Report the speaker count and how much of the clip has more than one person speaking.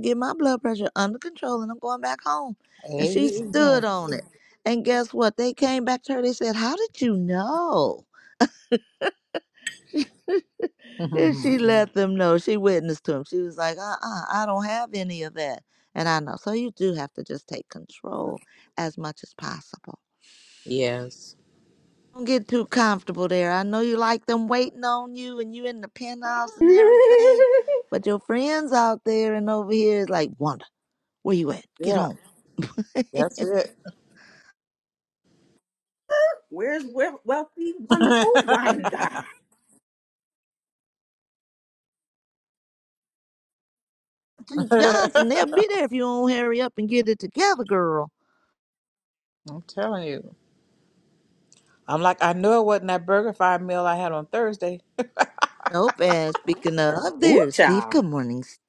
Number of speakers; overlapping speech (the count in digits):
3, about 6%